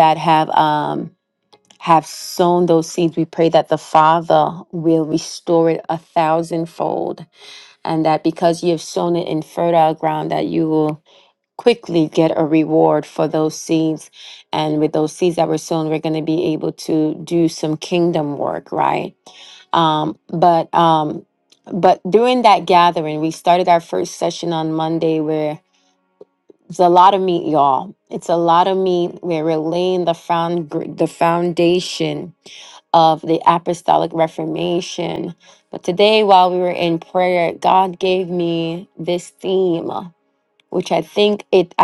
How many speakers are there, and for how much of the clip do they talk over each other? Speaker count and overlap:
one, no overlap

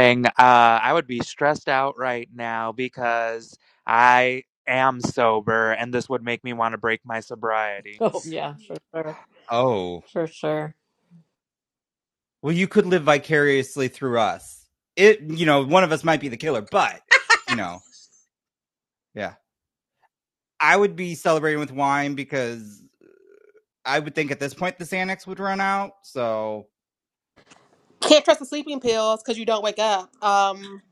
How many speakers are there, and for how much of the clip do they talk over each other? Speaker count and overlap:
four, no overlap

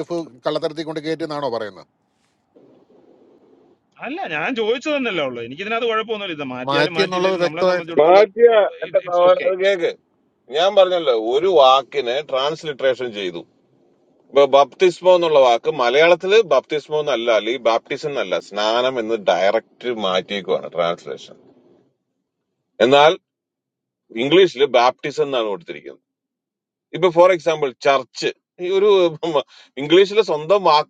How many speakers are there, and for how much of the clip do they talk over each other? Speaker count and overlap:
three, about 7%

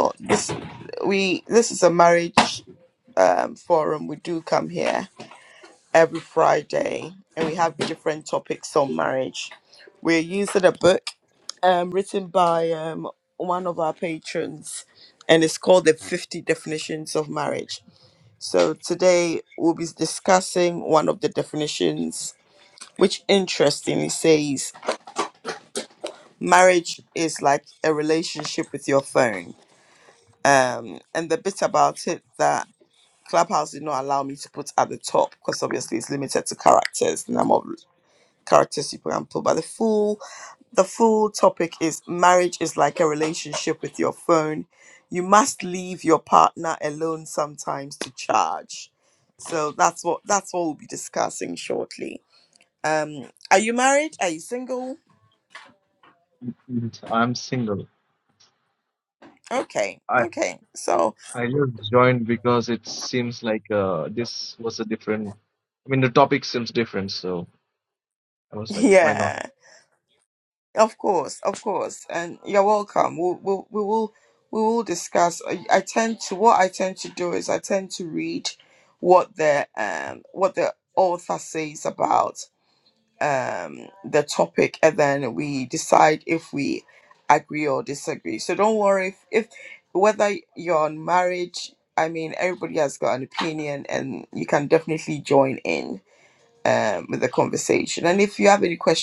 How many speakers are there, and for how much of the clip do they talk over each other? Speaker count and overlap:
two, about 1%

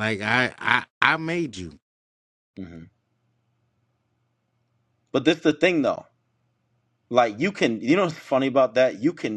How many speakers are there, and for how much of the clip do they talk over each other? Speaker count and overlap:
two, no overlap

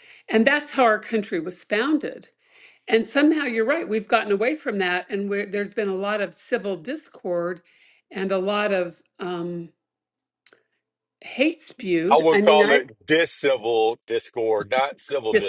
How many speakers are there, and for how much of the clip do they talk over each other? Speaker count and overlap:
two, about 6%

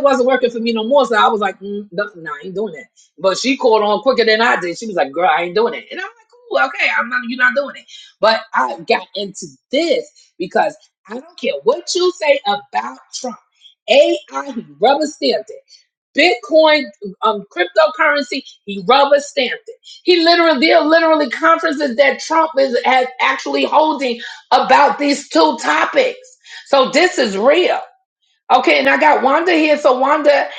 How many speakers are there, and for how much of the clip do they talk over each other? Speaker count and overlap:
one, no overlap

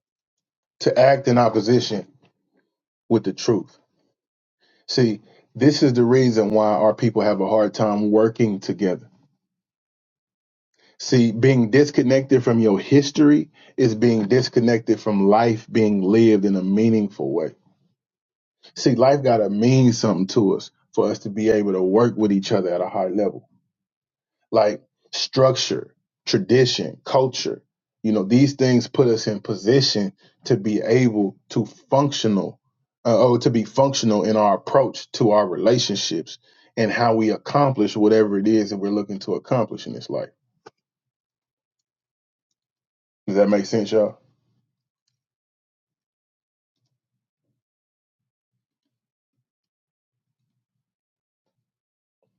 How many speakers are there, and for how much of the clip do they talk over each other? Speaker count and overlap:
one, no overlap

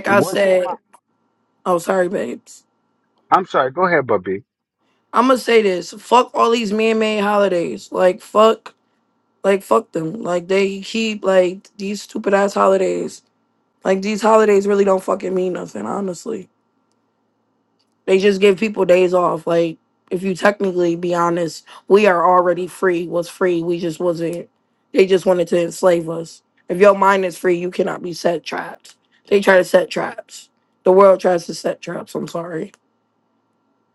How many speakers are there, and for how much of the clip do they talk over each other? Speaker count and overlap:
two, about 2%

